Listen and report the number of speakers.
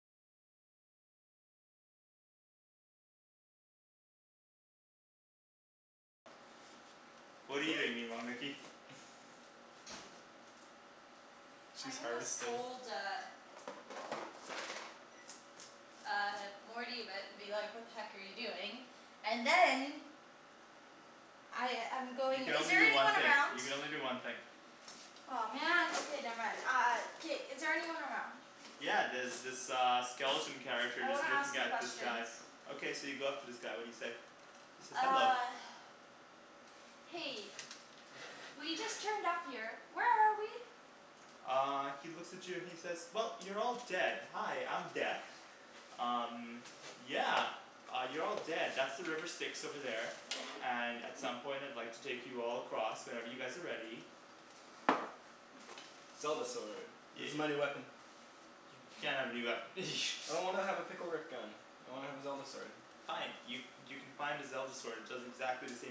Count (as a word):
three